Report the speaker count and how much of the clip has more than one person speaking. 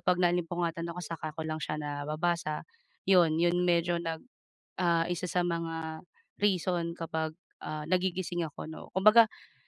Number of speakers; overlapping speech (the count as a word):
one, no overlap